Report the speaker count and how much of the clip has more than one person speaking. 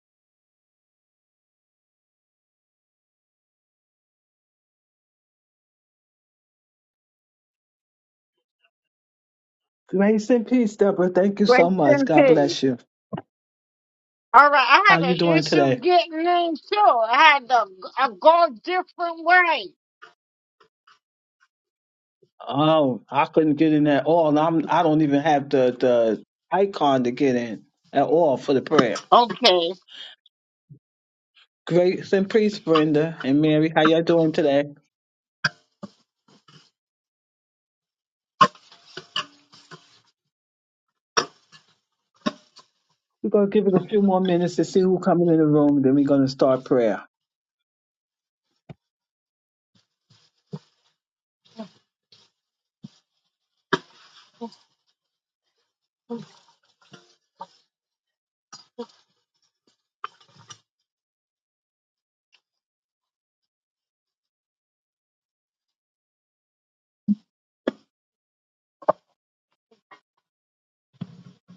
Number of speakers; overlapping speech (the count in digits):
2, about 3%